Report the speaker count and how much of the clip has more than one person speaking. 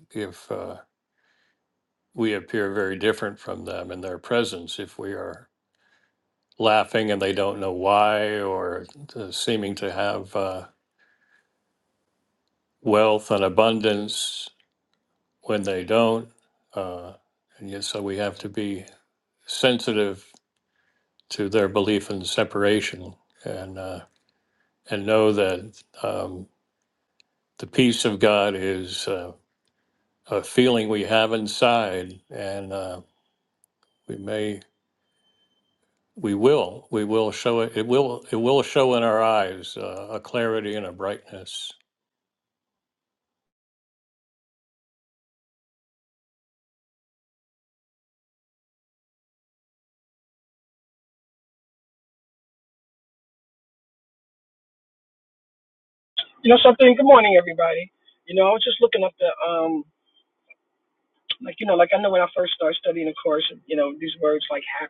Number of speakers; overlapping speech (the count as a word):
two, no overlap